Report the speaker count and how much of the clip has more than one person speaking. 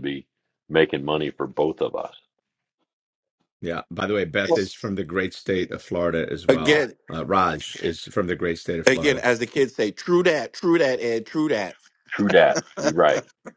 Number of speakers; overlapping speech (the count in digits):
3, about 6%